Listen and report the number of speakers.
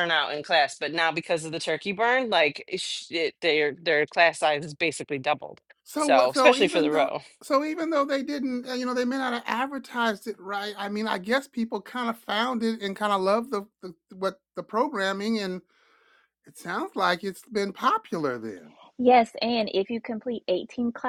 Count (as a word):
three